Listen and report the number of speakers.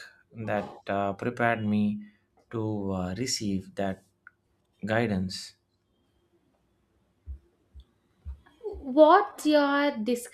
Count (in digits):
2